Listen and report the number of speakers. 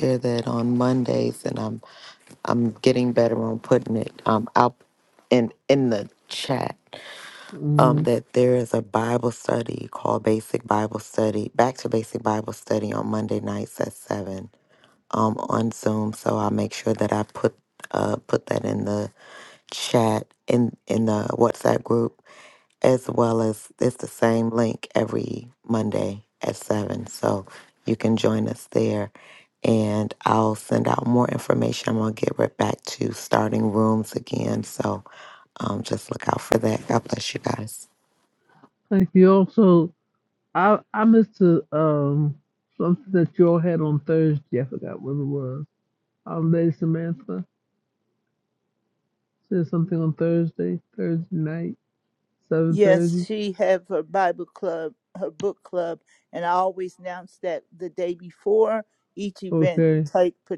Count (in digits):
3